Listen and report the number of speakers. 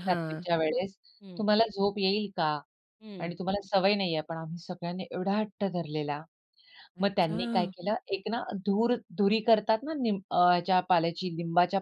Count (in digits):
2